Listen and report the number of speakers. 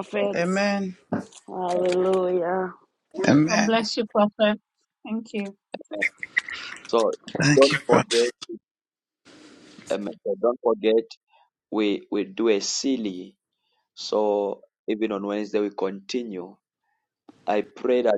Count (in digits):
4